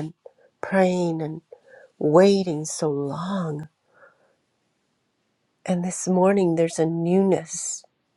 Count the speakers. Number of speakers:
one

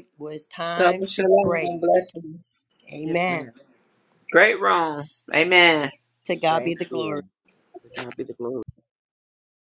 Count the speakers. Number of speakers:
three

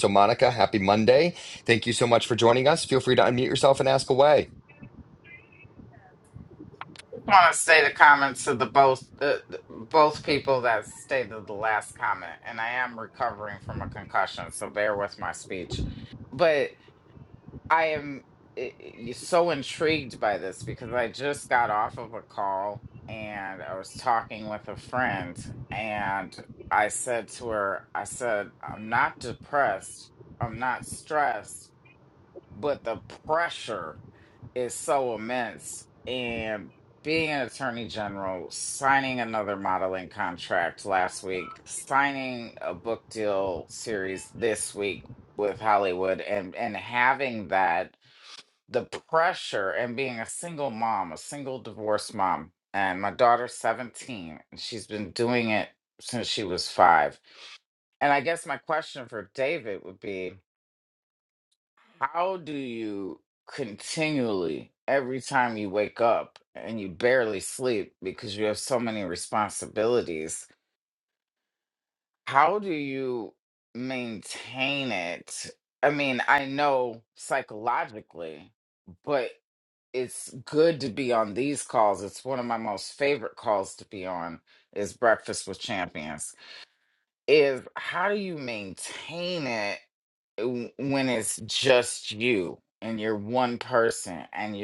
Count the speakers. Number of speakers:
two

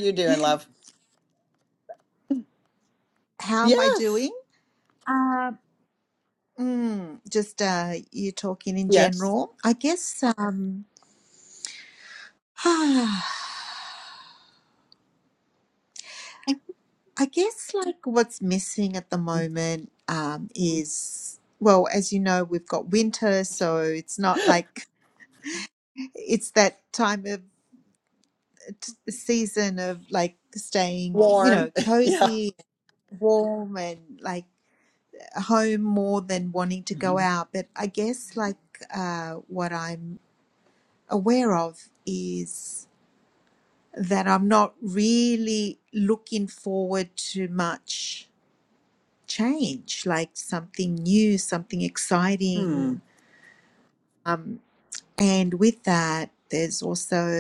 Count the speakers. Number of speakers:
two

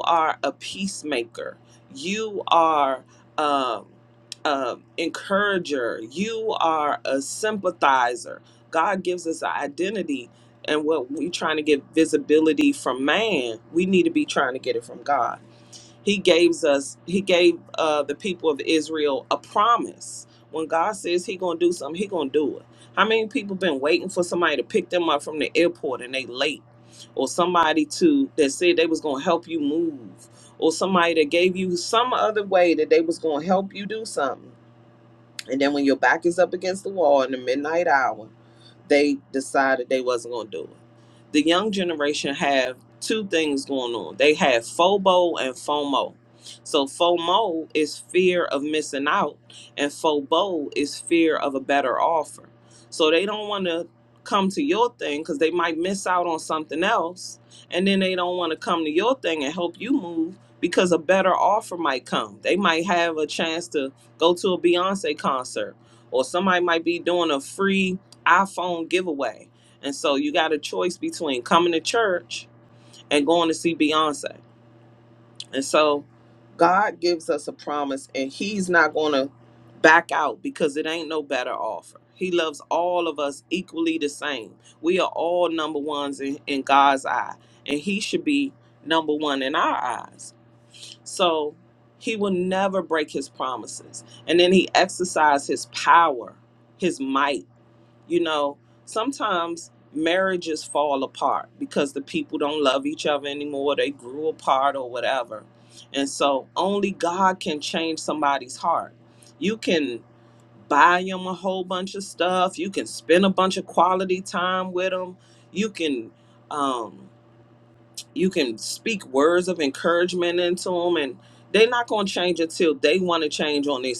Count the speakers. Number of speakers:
one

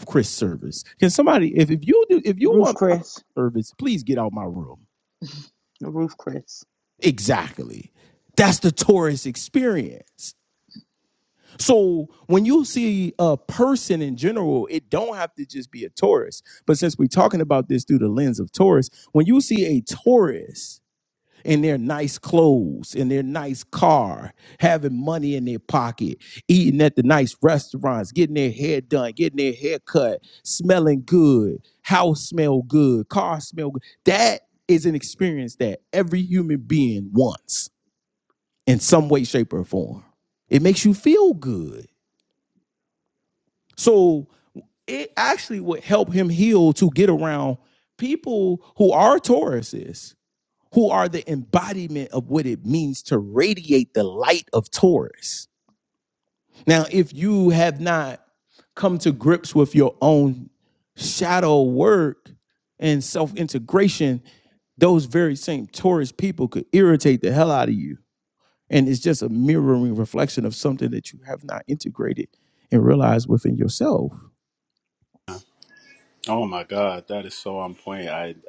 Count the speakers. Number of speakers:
three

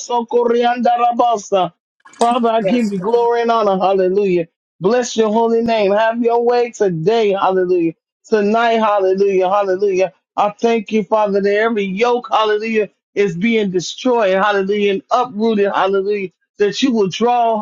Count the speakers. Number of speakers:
one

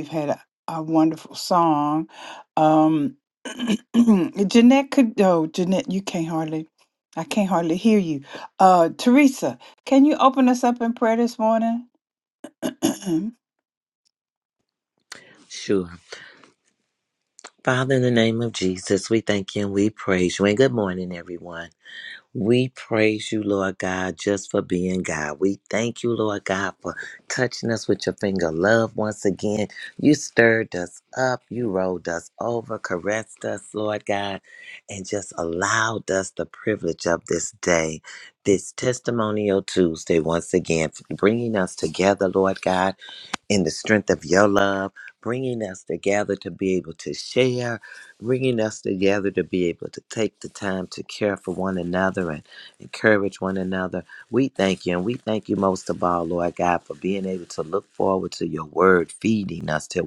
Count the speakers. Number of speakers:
two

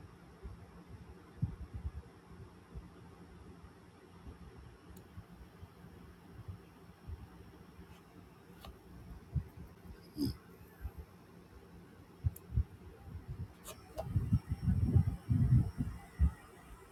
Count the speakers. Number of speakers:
zero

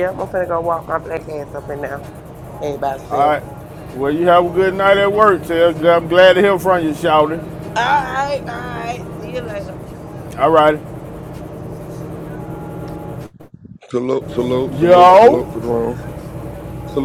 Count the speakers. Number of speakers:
three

